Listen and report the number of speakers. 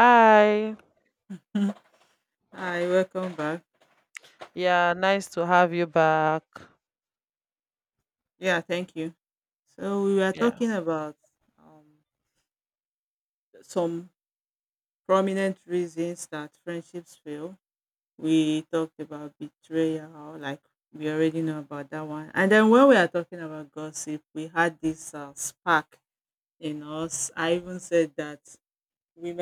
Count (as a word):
two